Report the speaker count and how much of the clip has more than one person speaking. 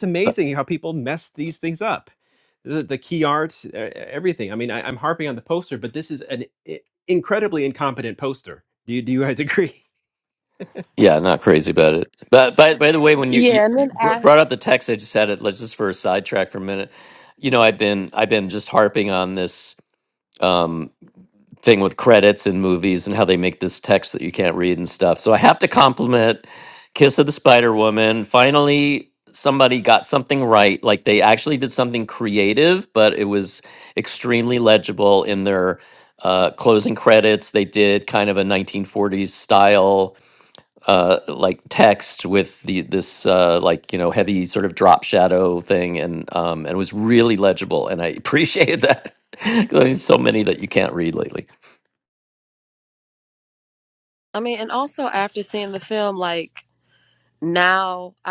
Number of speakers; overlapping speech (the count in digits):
3, about 2%